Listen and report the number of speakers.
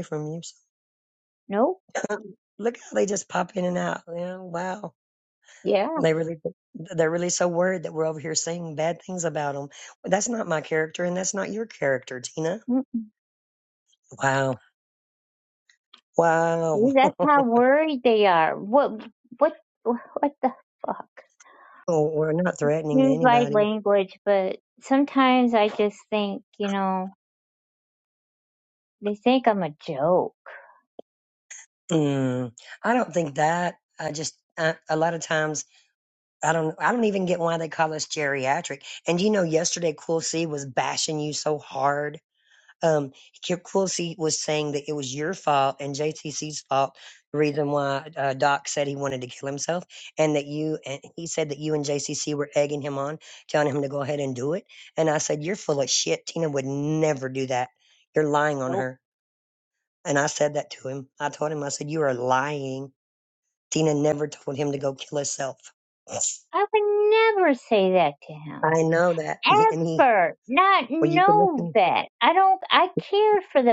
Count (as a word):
two